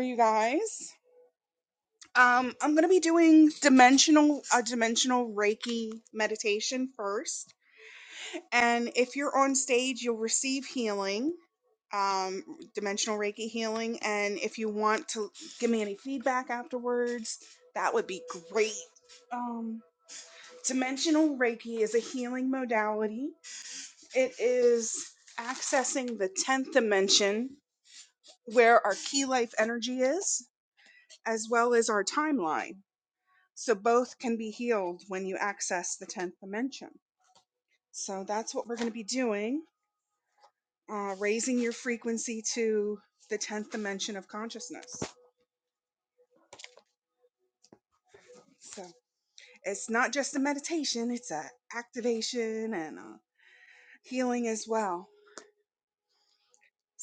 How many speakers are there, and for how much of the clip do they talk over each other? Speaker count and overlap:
1, no overlap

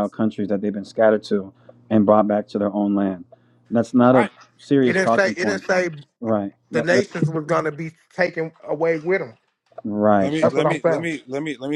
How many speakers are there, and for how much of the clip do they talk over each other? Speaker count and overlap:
3, about 20%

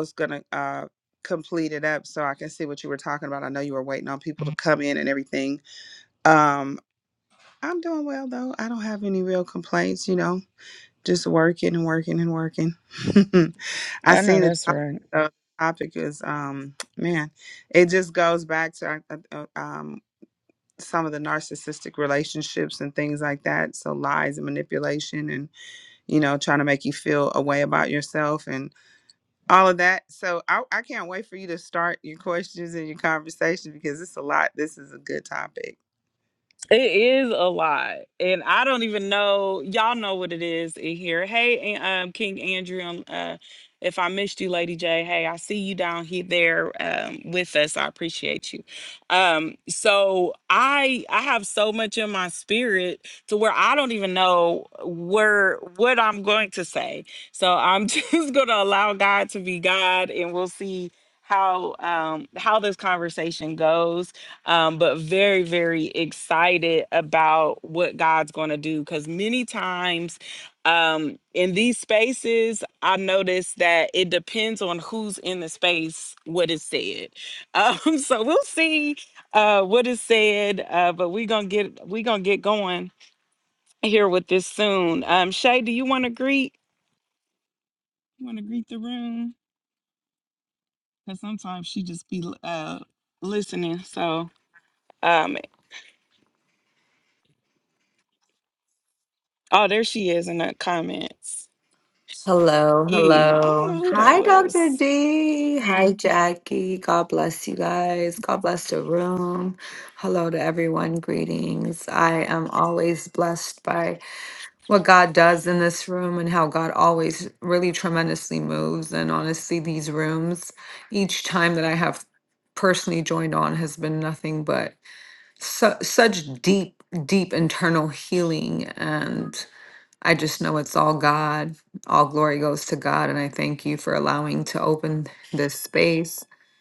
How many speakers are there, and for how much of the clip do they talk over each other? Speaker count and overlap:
3, about 2%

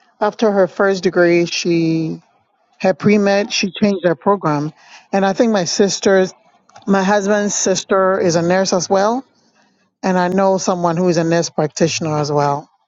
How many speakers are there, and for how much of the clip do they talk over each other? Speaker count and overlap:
1, no overlap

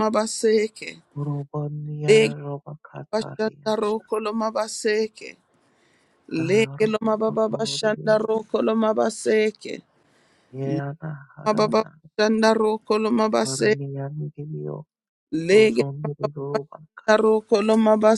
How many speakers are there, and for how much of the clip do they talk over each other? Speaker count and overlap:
2, about 22%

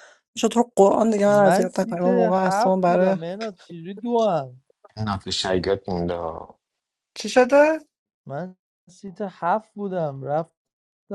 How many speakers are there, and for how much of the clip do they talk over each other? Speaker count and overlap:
3, about 17%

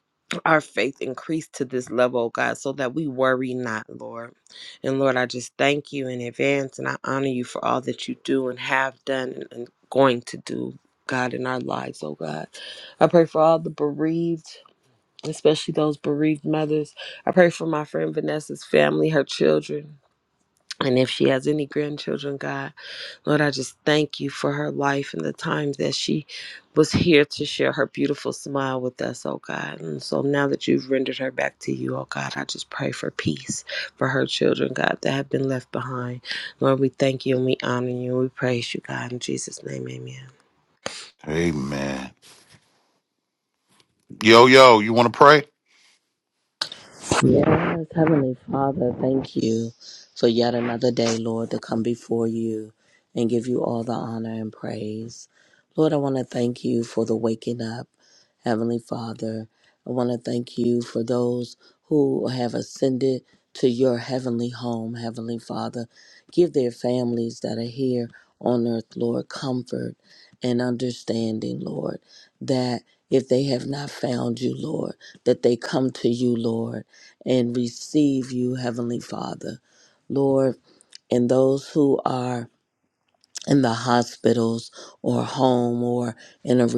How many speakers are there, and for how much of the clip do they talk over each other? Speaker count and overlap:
3, no overlap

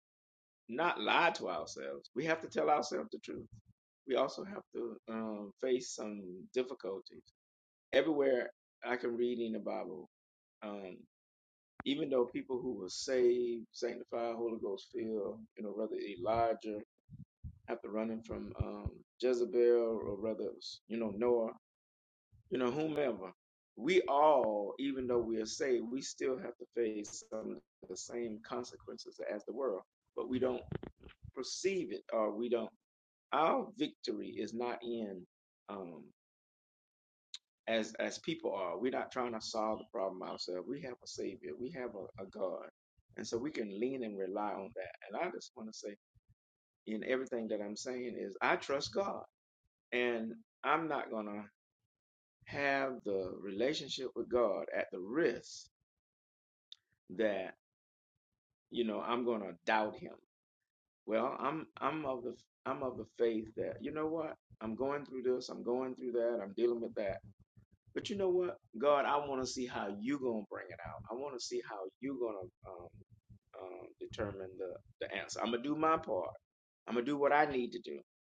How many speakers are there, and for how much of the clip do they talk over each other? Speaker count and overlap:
1, no overlap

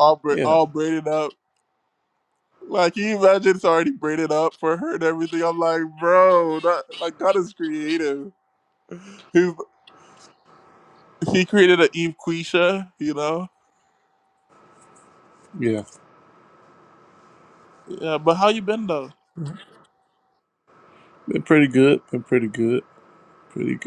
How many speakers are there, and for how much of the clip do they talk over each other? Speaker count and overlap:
2, about 1%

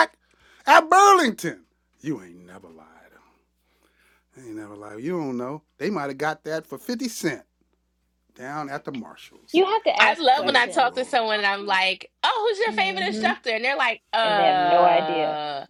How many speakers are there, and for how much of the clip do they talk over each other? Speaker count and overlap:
3, about 17%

